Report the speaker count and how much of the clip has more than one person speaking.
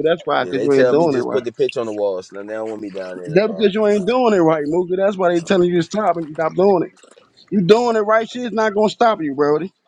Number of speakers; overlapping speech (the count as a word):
two, about 15%